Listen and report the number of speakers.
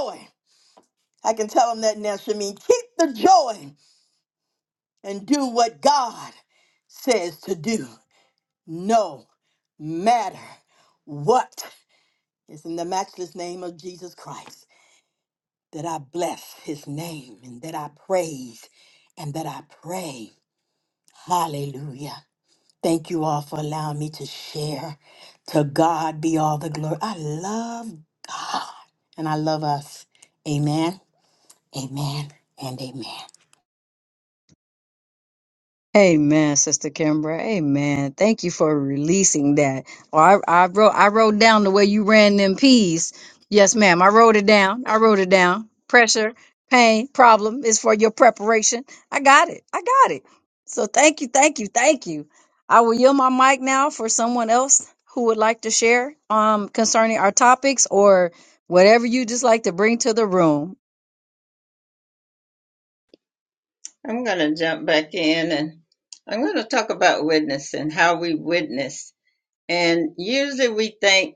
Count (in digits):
3